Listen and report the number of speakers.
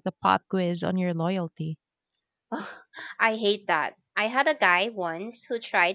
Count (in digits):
2